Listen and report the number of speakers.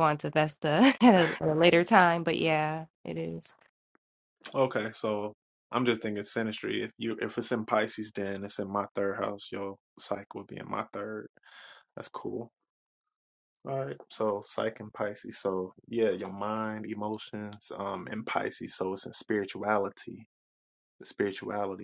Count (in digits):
2